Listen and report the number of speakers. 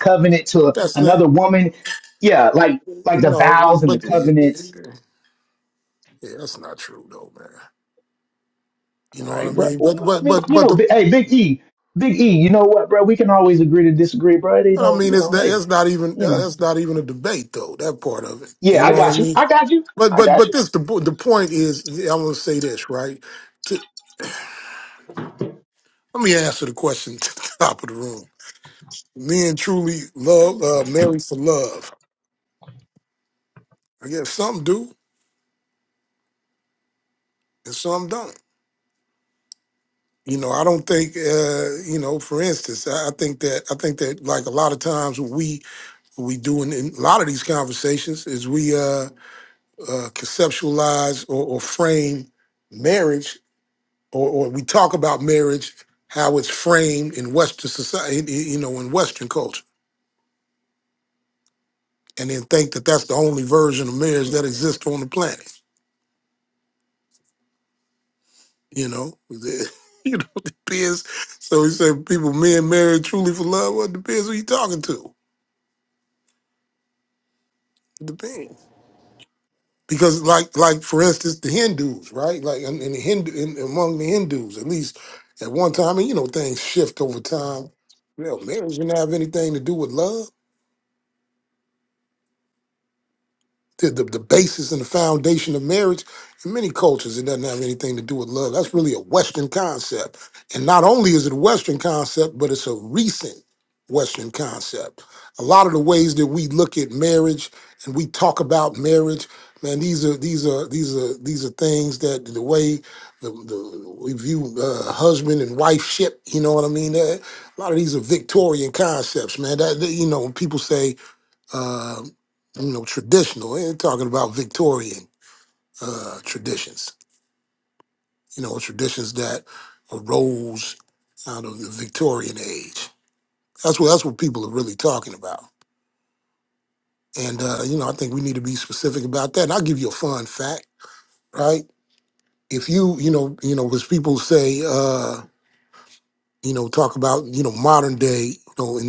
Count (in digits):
2